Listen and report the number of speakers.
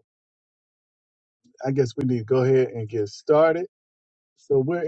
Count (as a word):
one